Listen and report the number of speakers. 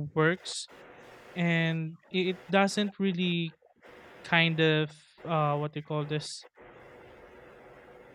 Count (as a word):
one